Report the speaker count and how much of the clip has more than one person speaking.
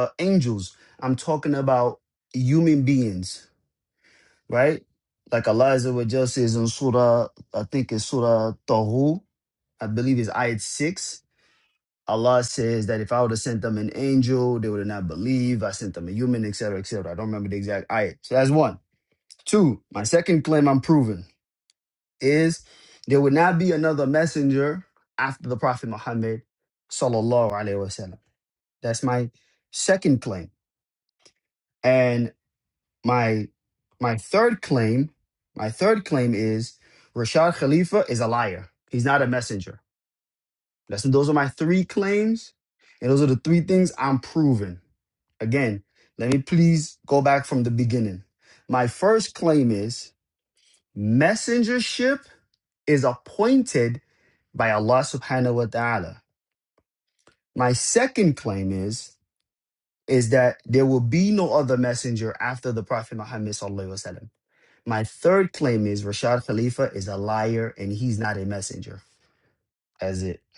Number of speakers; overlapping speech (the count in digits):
1, no overlap